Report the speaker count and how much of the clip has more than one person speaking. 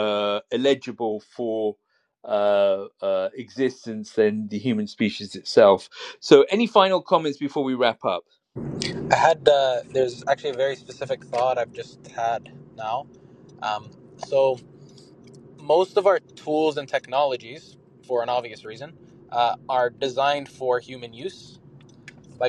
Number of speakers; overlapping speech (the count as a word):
two, no overlap